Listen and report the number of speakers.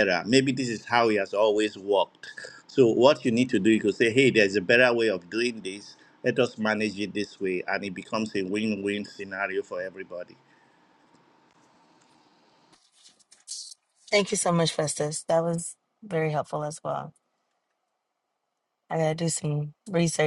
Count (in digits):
2